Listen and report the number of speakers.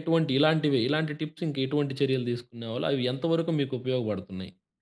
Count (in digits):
1